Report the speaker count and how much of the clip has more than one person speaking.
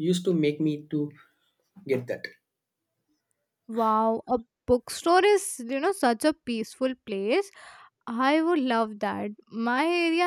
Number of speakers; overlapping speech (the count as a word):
two, no overlap